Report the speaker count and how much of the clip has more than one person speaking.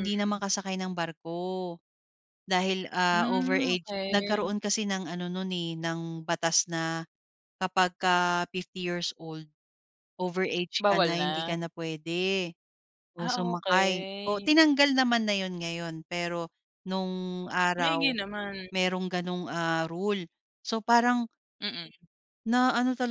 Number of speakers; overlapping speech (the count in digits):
2, about 18%